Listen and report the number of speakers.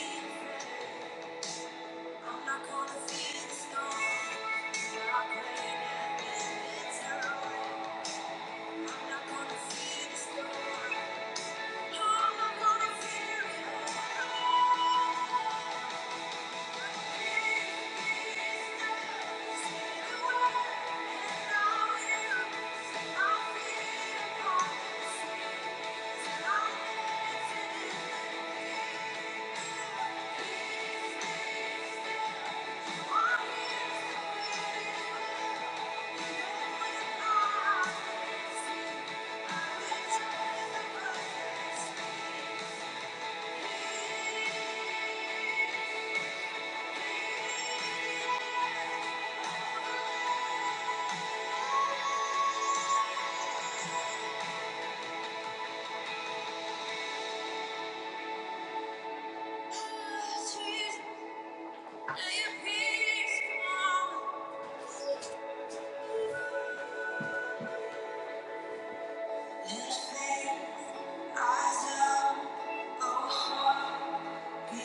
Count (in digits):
1